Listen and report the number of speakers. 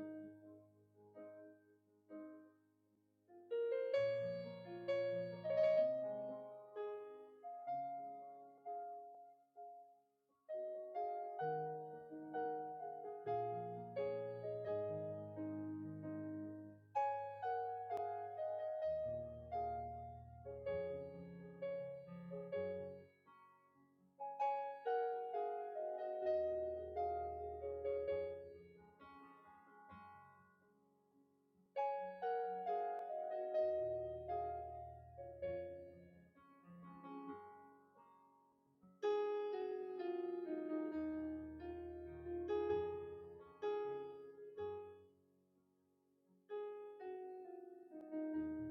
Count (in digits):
0